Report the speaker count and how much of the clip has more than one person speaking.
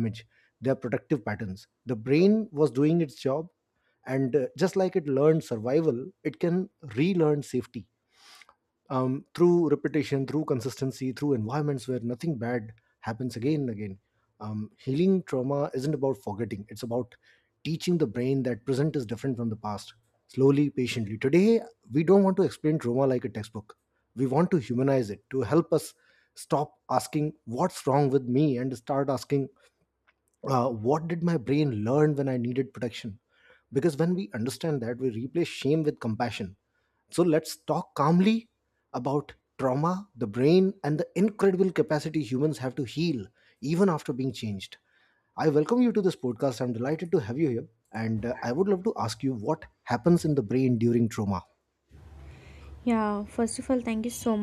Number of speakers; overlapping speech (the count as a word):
two, no overlap